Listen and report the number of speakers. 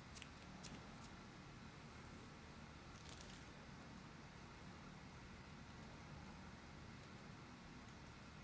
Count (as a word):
zero